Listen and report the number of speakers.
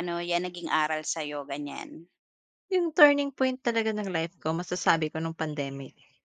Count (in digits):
2